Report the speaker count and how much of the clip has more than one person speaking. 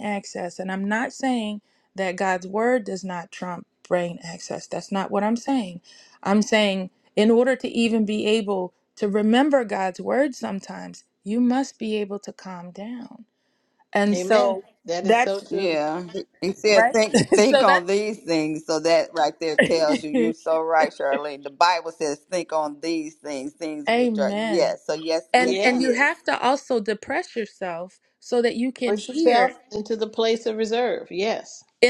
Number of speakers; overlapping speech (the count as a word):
three, about 13%